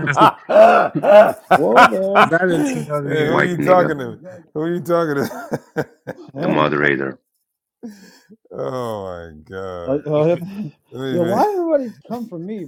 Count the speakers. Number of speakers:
4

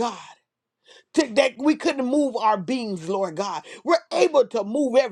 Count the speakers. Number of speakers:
1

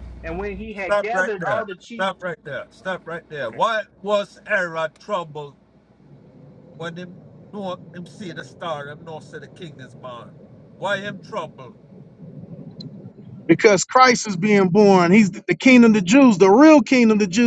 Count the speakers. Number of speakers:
3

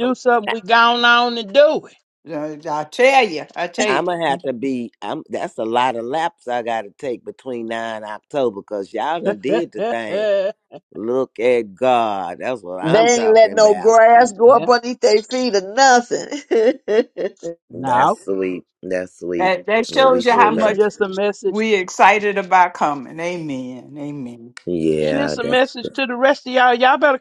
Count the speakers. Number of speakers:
4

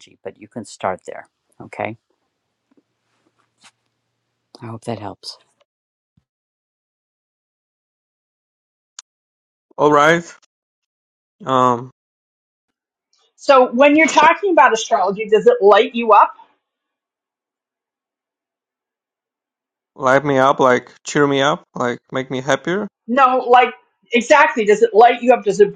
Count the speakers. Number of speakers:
3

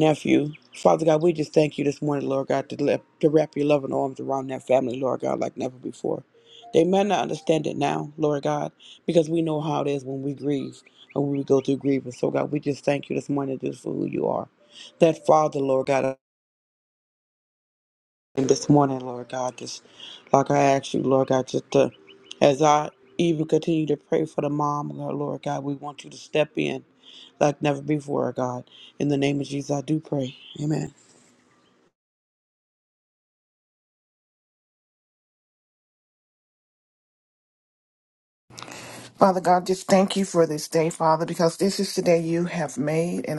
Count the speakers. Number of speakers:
2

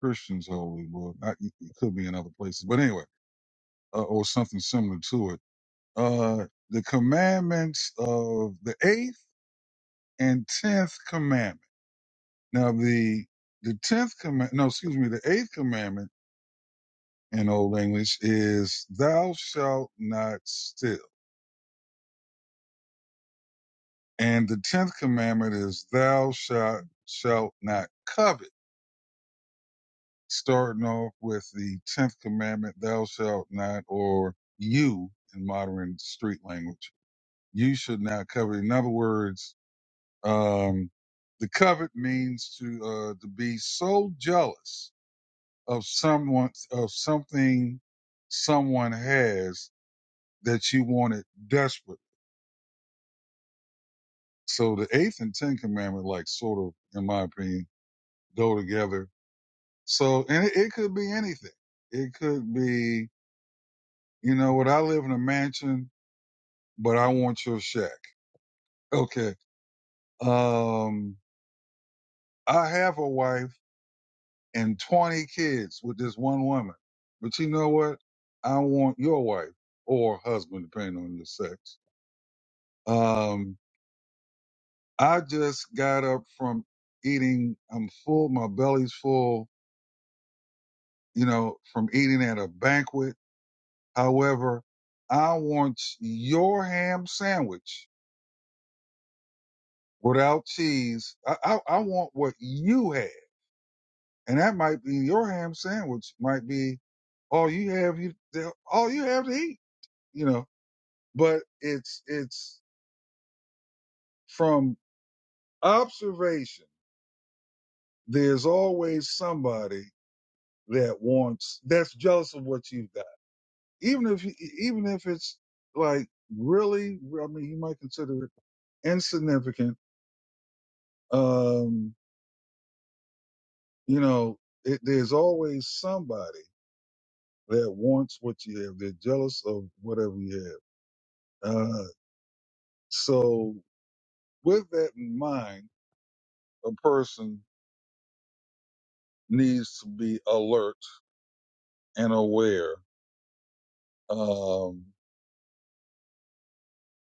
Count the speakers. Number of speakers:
1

